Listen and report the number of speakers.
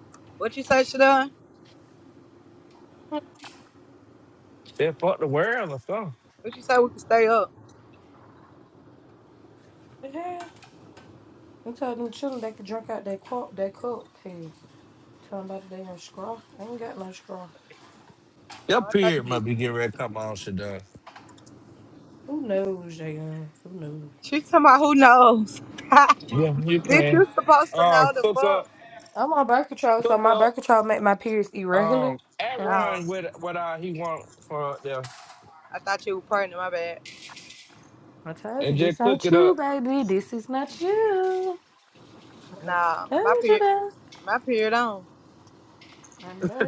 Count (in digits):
3